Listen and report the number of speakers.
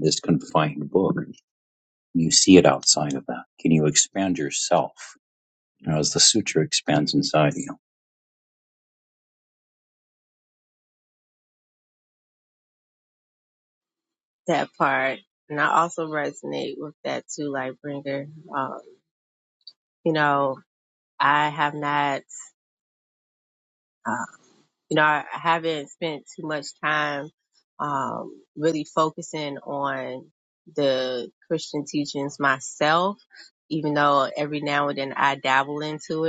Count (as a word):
two